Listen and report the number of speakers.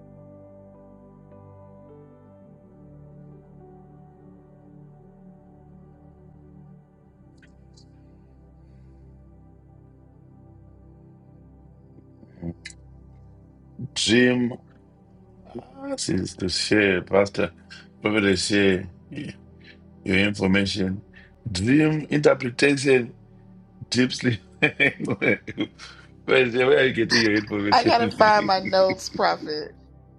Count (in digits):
2